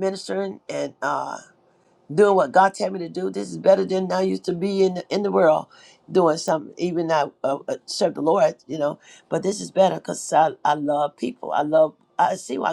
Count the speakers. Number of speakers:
1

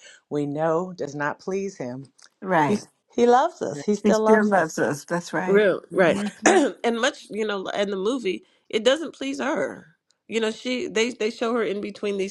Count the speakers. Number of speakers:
3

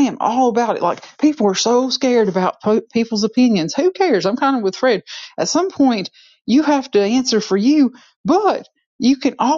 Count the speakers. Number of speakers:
1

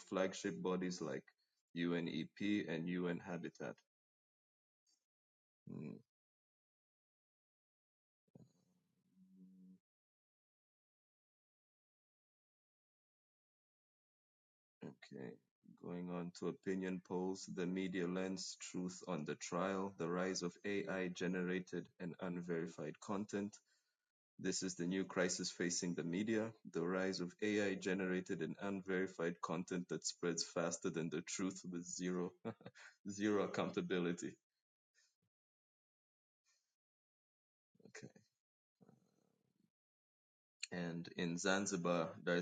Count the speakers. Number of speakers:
1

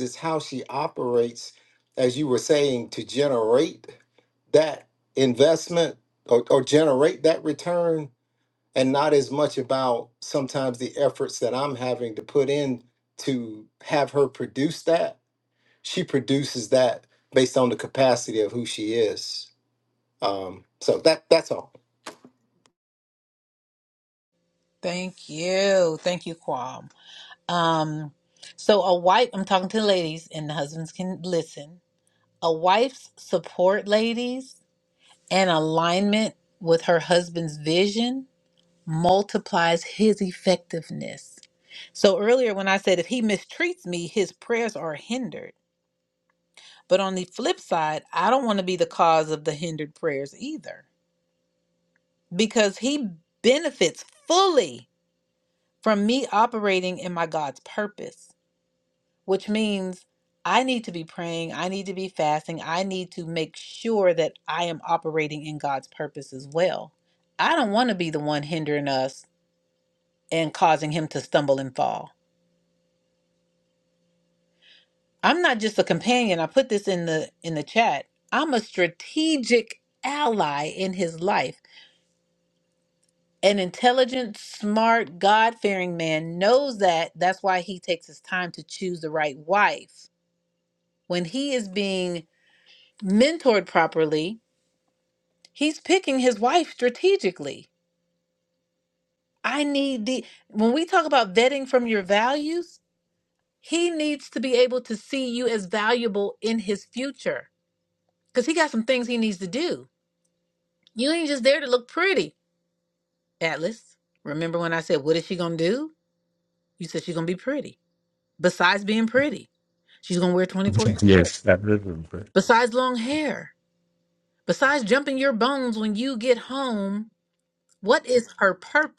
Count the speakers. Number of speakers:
3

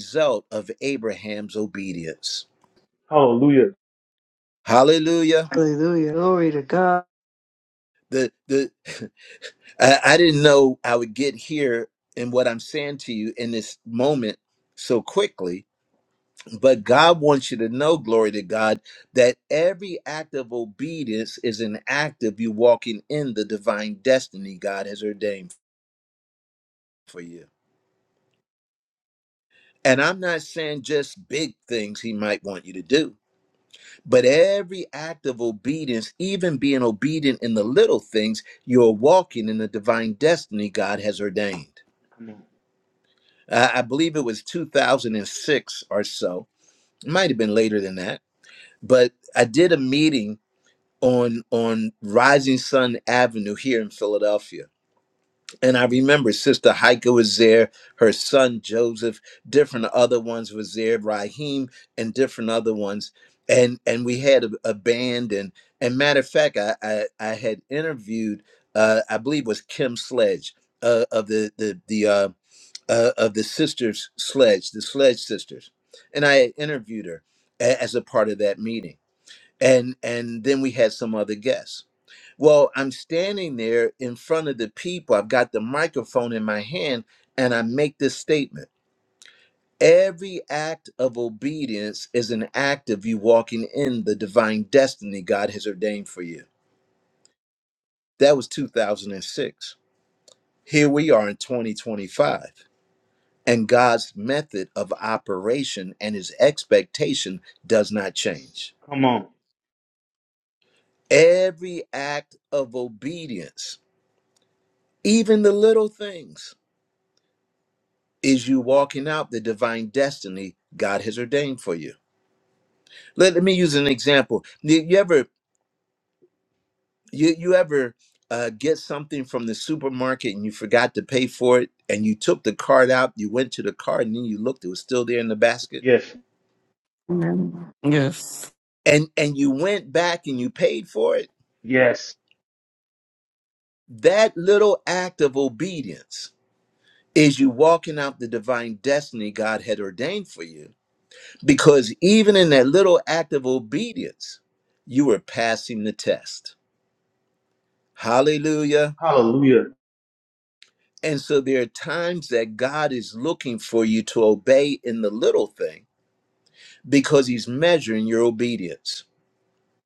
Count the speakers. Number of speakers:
4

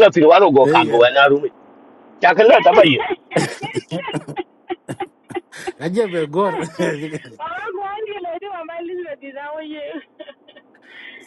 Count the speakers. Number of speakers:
3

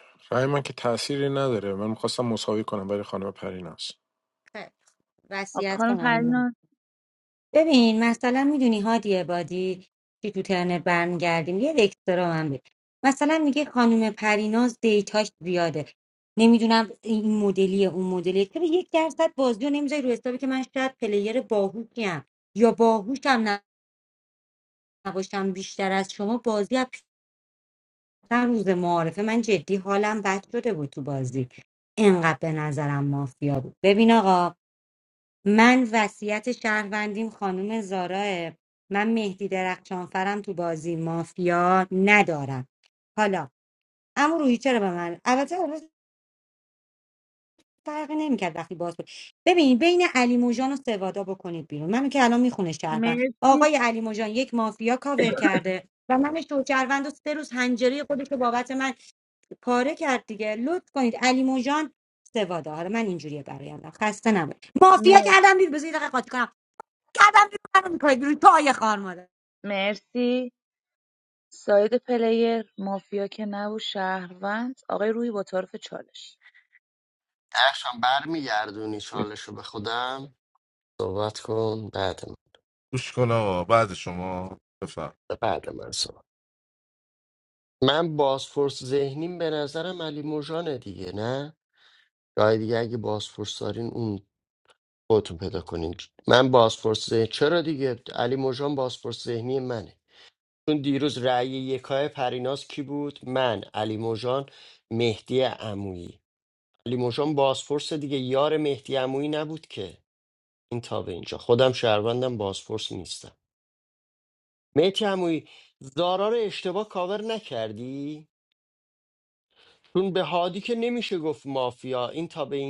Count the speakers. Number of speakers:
5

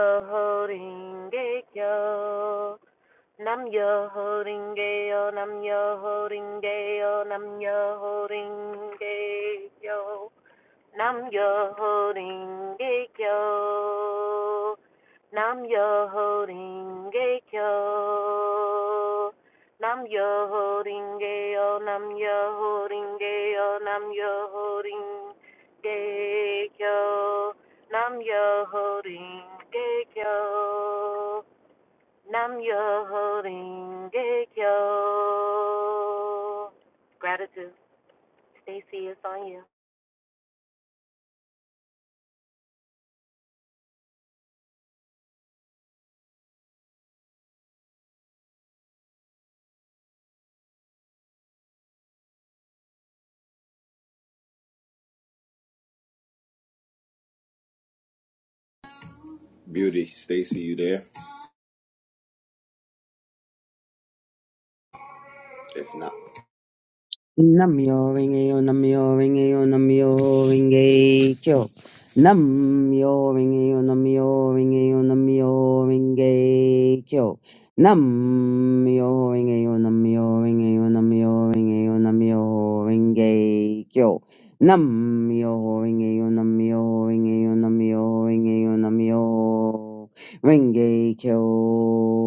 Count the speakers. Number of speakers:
3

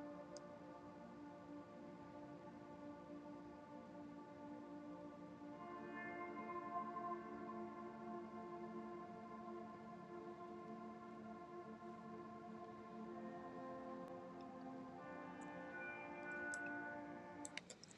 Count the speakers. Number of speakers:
0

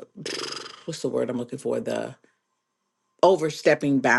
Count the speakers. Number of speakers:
1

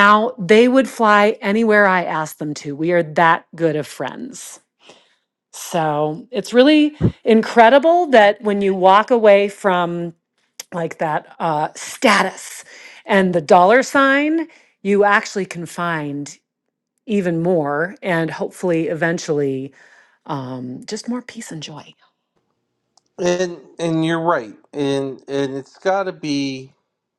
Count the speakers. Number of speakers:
2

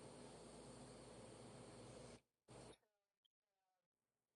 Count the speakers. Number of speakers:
0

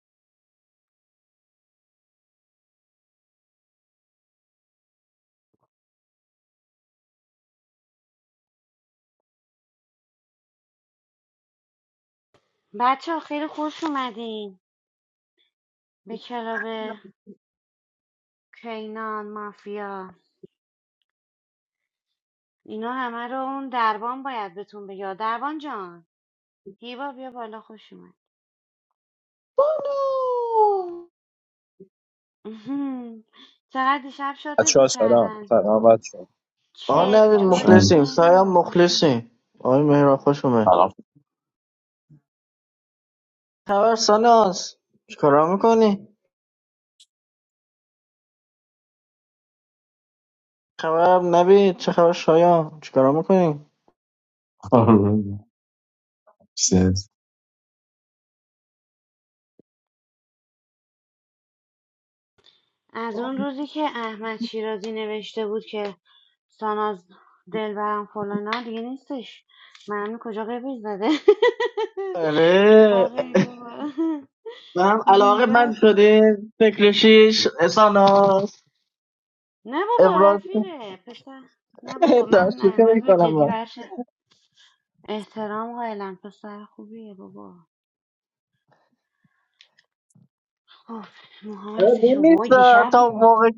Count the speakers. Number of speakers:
4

